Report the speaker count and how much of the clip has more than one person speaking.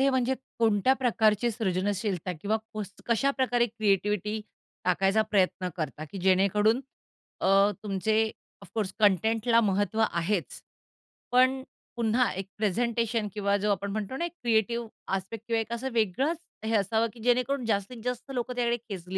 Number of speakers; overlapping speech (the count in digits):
1, no overlap